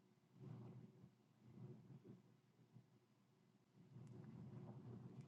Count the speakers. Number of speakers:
0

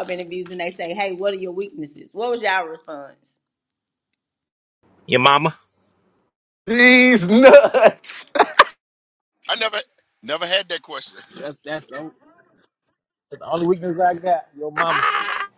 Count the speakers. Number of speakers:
4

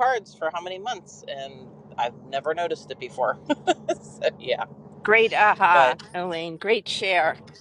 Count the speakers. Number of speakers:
2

